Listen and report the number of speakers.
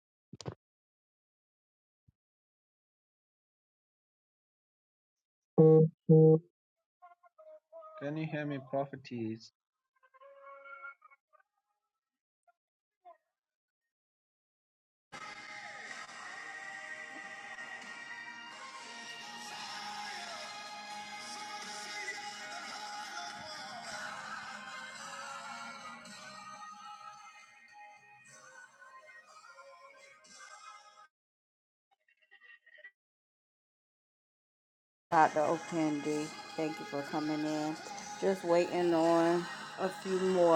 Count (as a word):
two